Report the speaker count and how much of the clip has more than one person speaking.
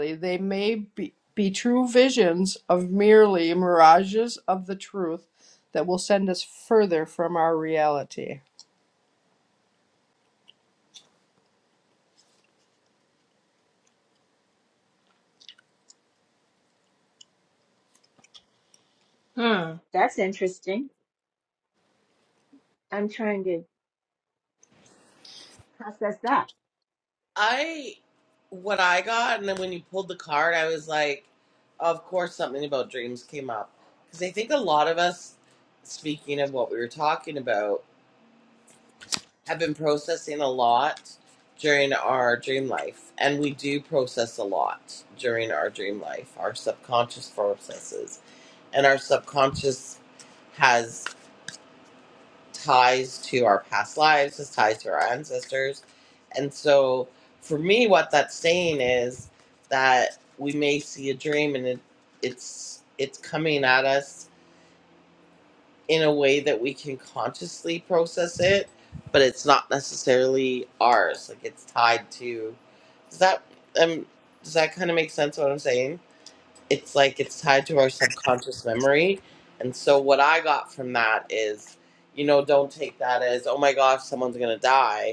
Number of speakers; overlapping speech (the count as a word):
three, no overlap